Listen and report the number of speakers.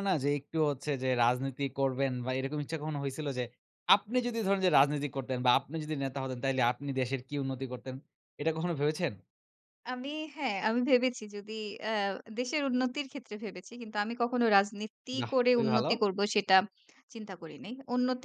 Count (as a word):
two